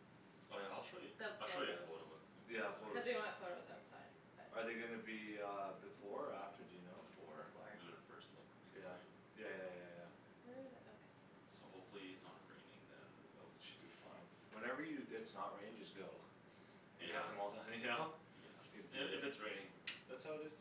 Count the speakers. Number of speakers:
three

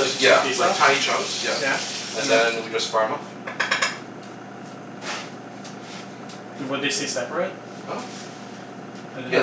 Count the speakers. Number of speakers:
two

